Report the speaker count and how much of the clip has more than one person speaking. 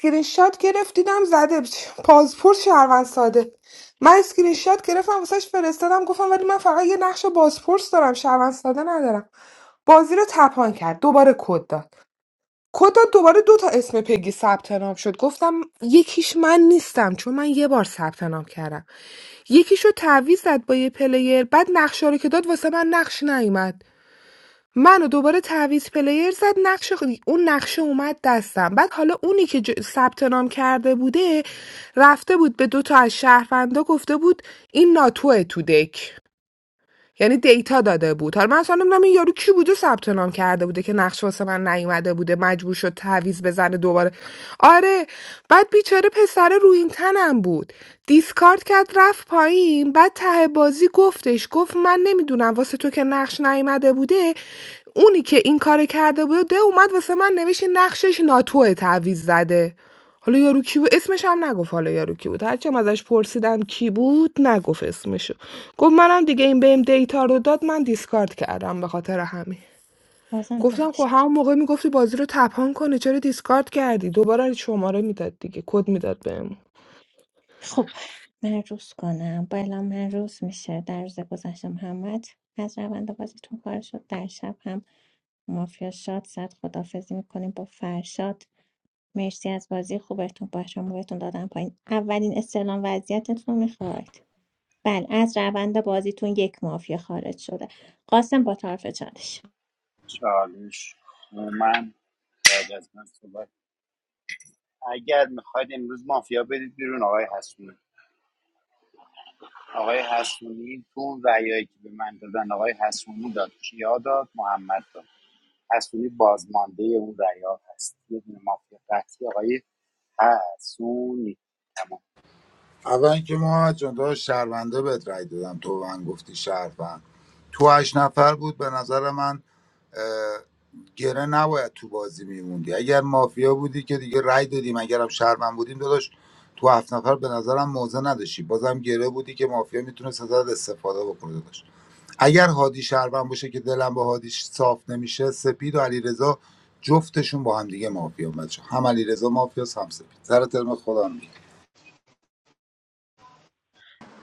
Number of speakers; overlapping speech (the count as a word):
four, under 1%